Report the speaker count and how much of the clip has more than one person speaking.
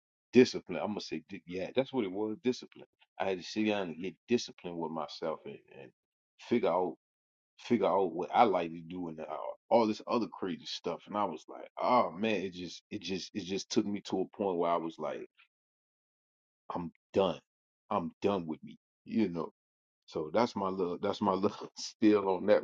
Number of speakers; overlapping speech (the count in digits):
1, no overlap